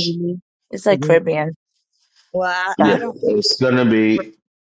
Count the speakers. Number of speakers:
3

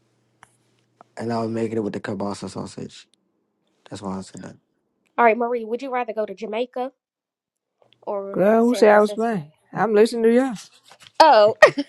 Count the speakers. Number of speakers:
3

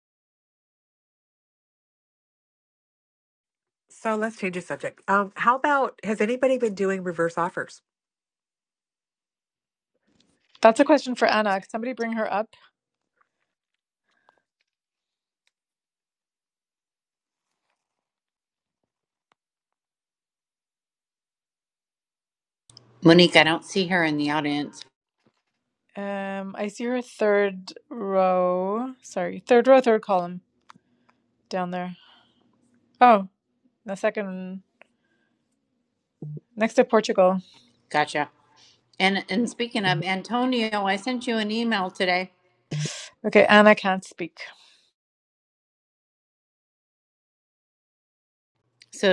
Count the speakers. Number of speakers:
3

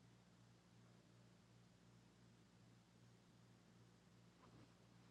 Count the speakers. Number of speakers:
0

